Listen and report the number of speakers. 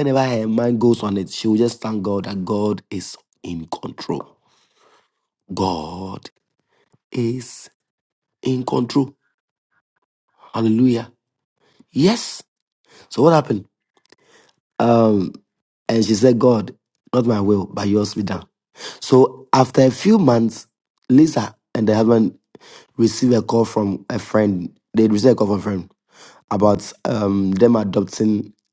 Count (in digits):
1